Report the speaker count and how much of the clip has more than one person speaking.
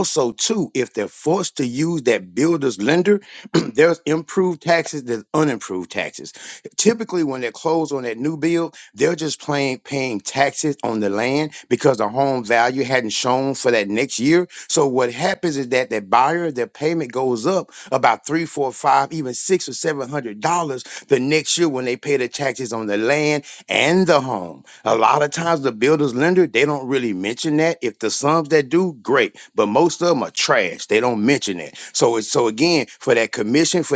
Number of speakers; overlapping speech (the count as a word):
one, no overlap